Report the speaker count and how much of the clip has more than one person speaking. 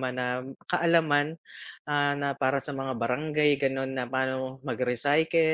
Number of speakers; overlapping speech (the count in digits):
1, no overlap